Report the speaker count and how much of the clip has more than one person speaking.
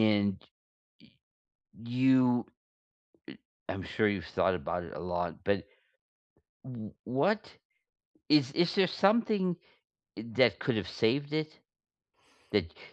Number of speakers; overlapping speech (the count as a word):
one, no overlap